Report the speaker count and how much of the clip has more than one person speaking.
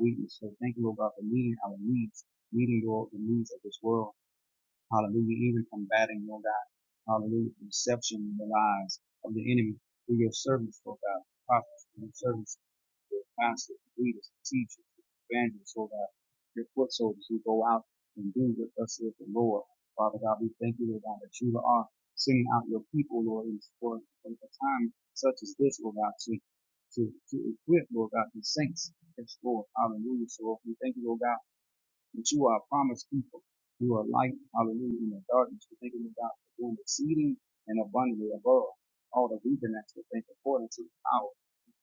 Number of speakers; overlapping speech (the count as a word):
one, no overlap